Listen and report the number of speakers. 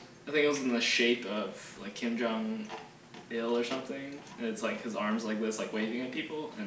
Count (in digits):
1